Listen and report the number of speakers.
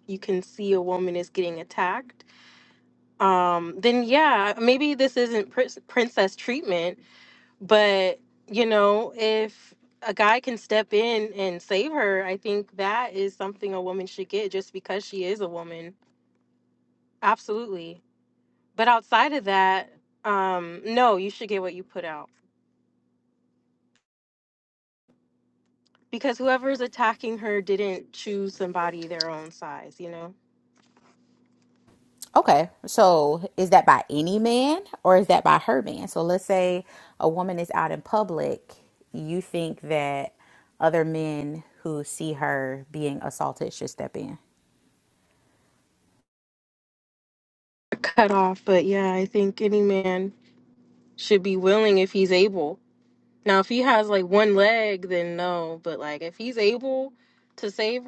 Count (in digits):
2